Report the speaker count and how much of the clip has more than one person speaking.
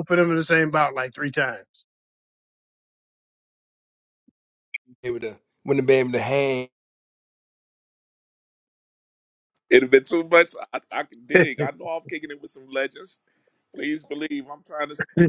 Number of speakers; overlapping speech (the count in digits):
3, no overlap